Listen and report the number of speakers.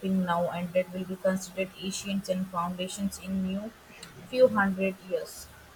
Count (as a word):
one